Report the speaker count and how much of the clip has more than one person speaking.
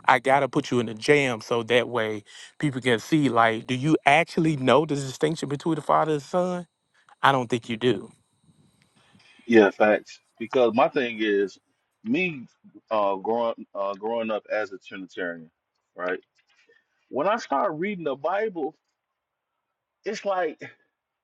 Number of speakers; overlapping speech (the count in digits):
2, no overlap